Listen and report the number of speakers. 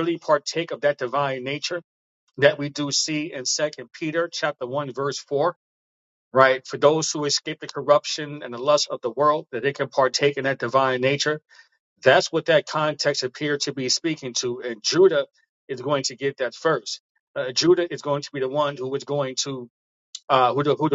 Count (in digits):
1